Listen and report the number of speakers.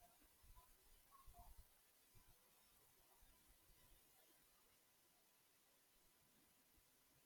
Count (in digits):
0